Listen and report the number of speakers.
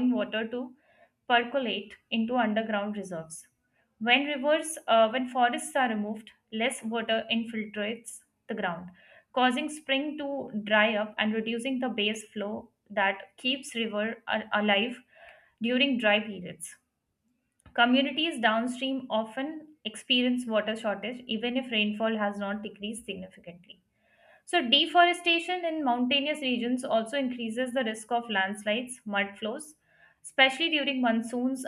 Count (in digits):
1